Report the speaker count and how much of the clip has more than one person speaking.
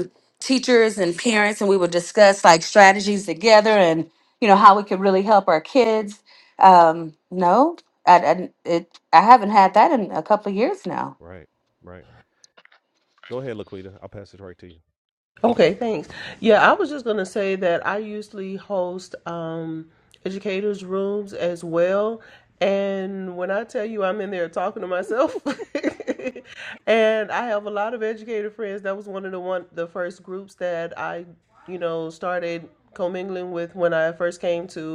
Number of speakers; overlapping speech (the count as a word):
three, no overlap